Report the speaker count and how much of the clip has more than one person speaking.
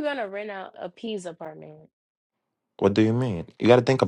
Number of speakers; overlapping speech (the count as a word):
two, no overlap